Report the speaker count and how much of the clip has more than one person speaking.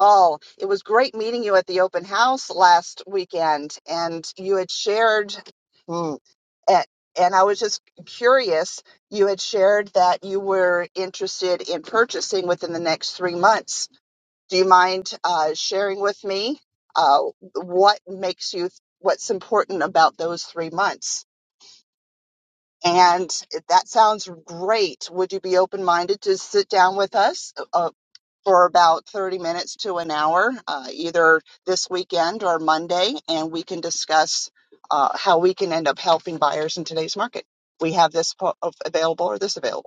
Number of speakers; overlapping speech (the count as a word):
one, no overlap